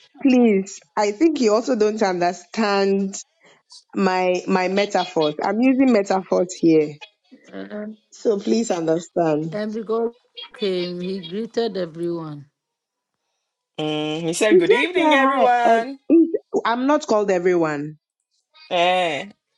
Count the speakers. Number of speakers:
three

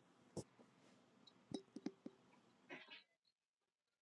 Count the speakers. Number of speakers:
zero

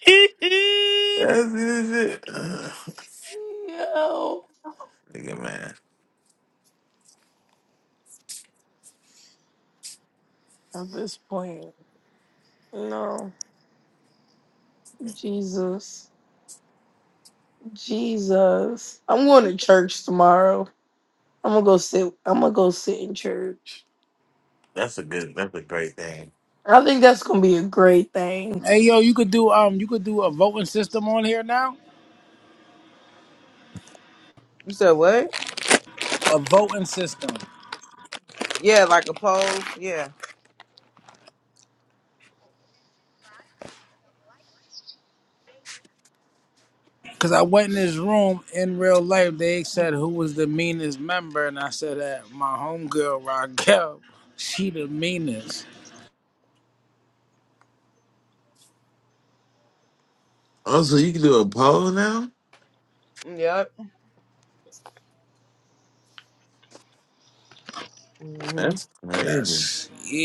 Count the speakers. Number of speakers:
four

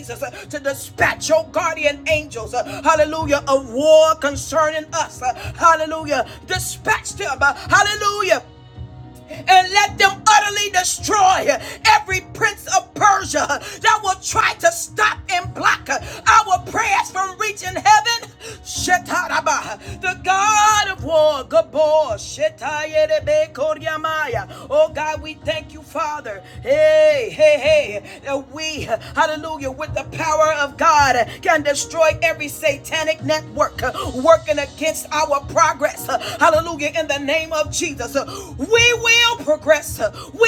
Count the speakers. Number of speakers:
one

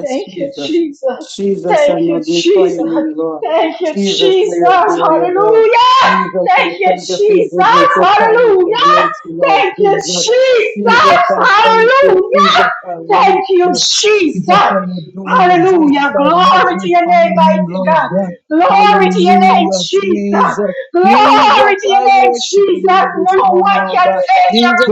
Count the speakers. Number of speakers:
two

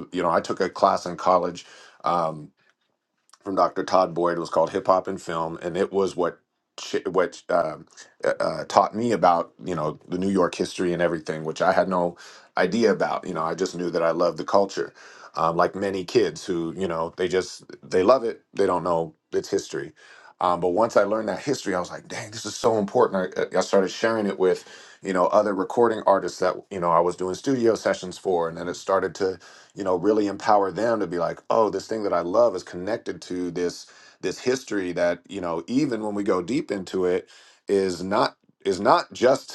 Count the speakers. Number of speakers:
one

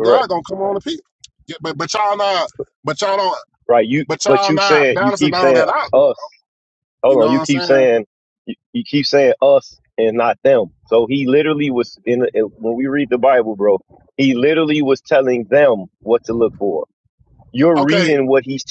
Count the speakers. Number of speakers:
two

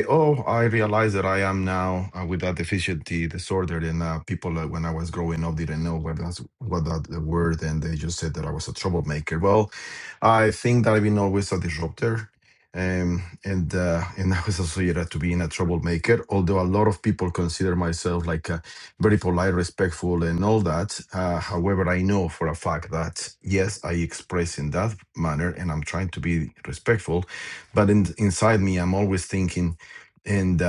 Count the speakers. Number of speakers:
one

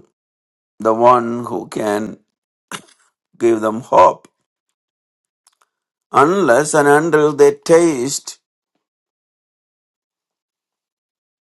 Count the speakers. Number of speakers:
one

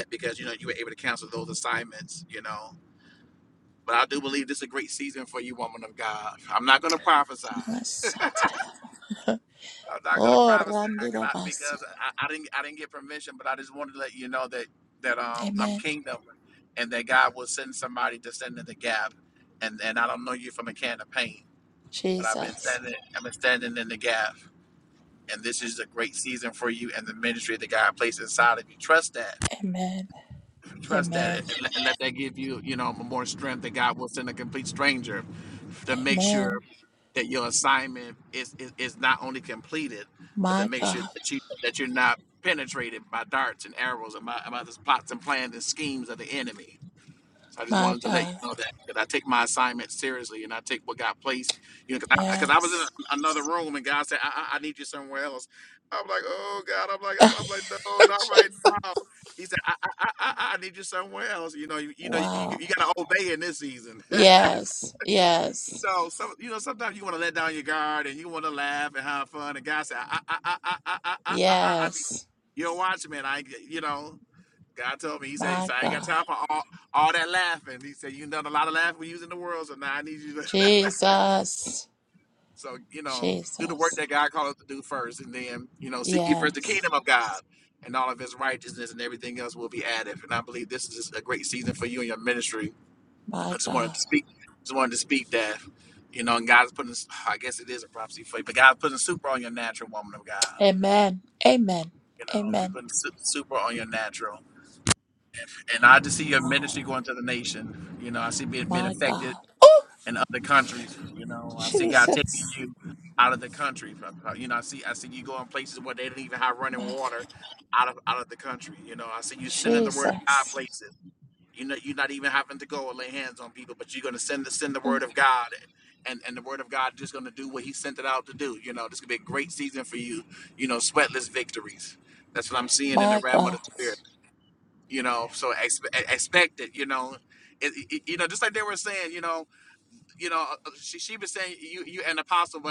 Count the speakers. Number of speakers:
two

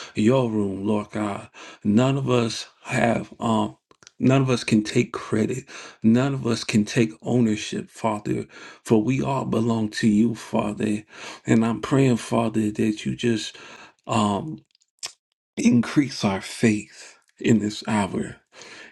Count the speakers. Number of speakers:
one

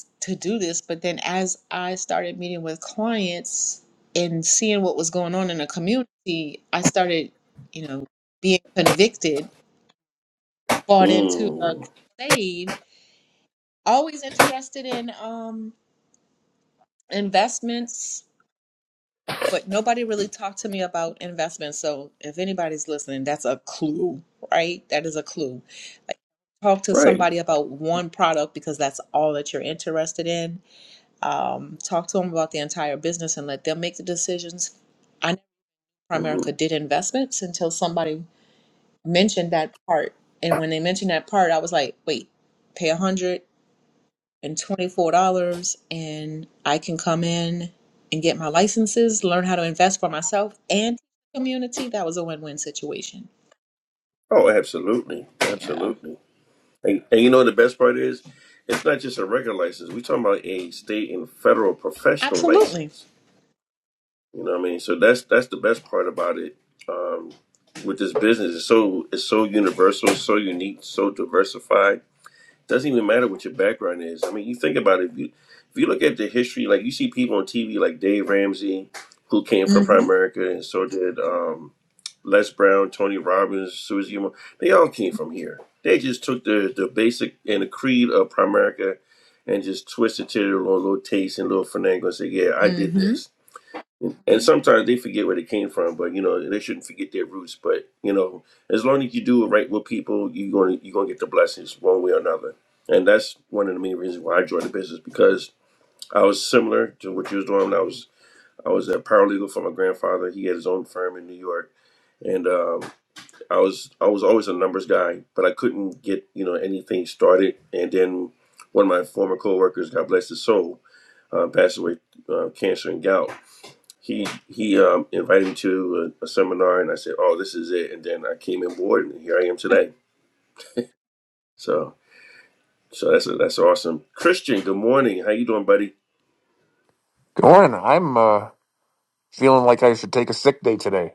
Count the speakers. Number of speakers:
three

